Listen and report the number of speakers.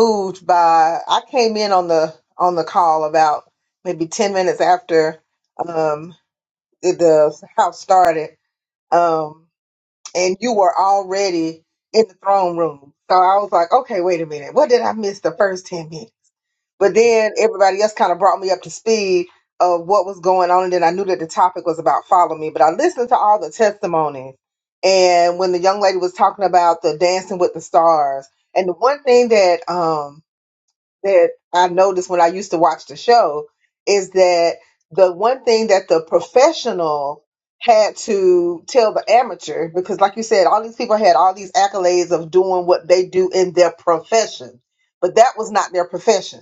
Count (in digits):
1